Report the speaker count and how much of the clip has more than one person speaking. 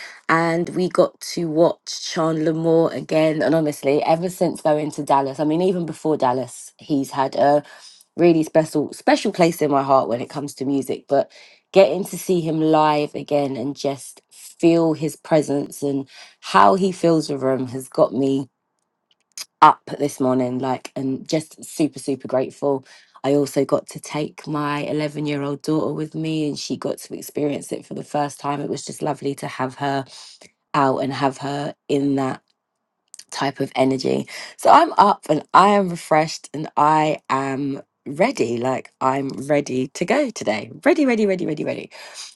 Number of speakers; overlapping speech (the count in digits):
1, no overlap